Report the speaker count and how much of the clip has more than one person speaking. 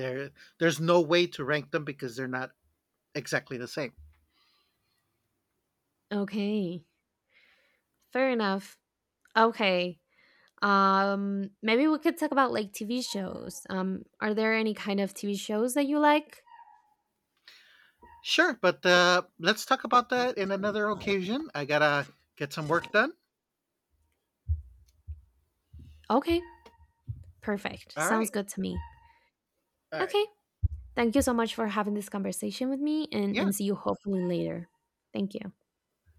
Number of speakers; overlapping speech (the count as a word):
two, about 2%